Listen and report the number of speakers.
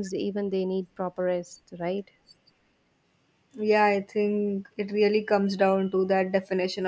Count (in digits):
2